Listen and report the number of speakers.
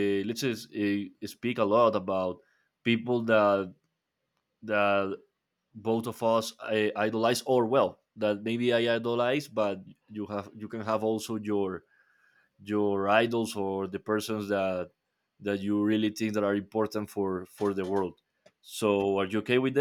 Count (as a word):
one